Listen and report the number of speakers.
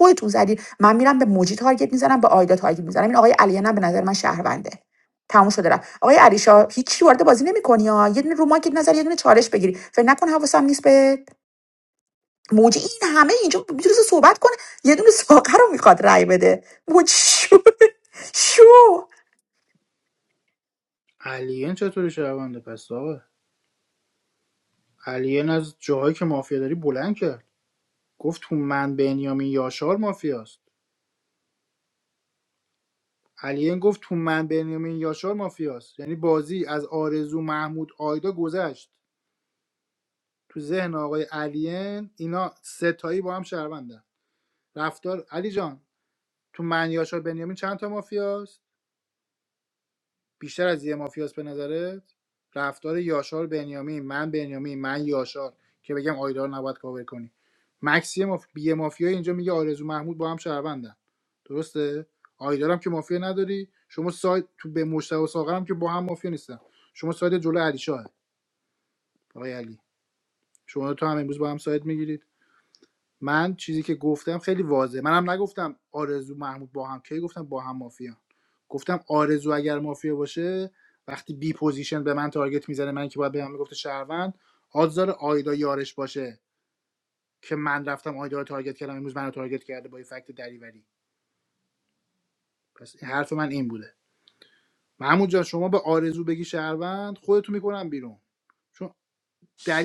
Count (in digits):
2